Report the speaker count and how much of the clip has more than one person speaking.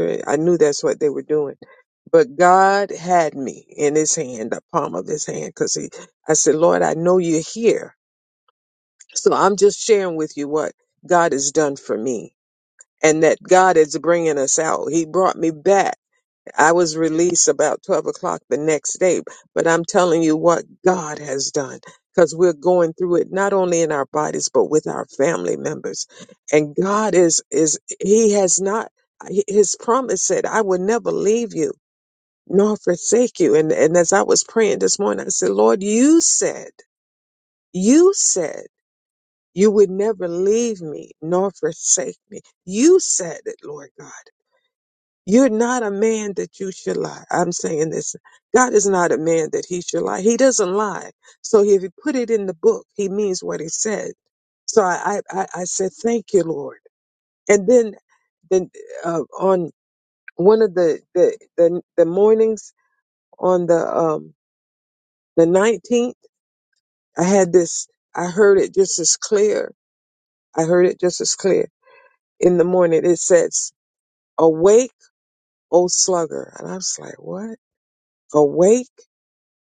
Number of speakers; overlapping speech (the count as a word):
one, no overlap